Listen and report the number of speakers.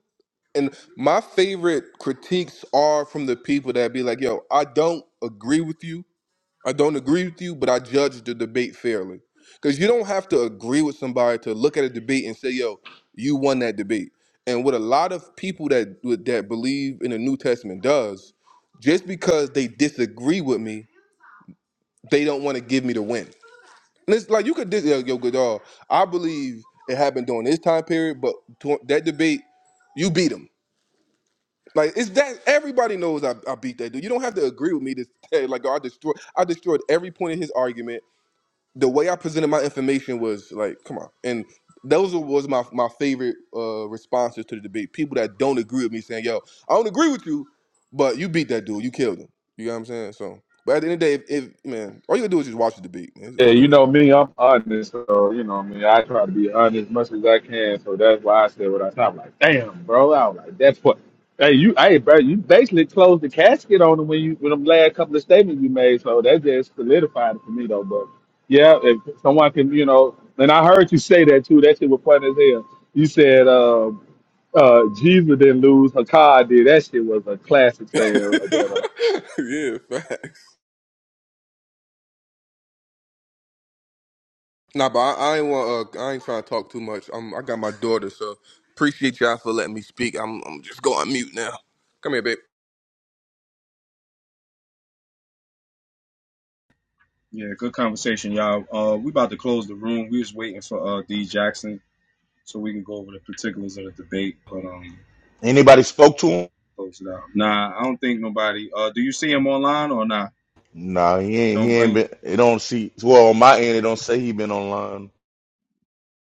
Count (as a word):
four